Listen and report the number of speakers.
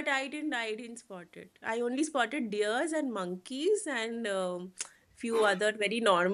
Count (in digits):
1